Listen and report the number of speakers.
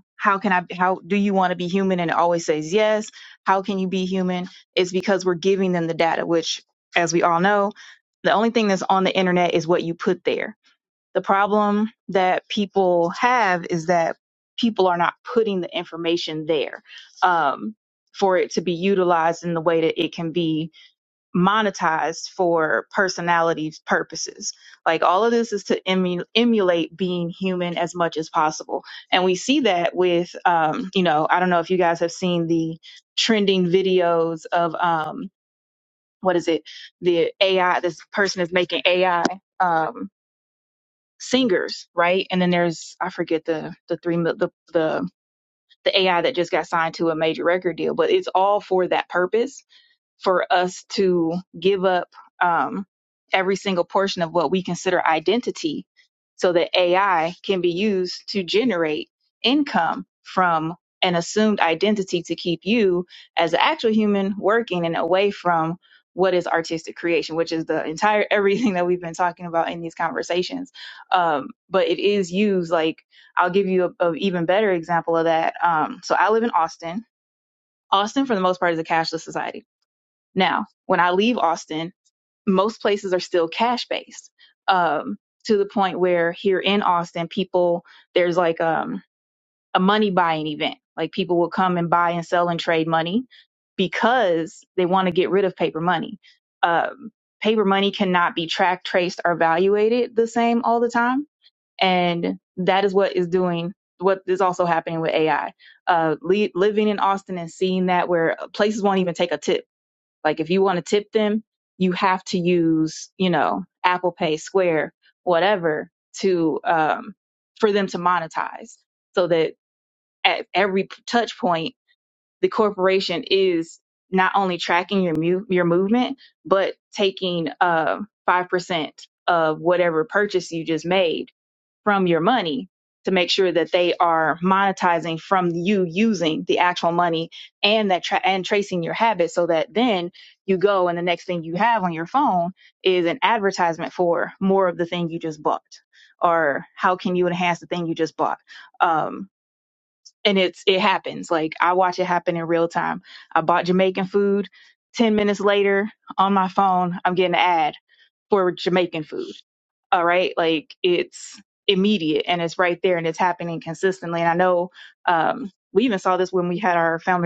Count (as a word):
one